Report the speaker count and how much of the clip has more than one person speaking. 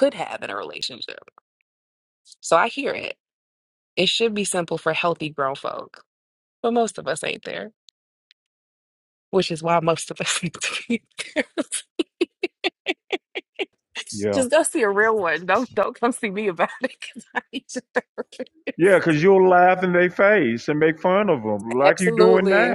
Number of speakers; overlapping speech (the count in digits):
2, about 5%